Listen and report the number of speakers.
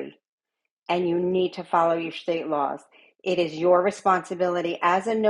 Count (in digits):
1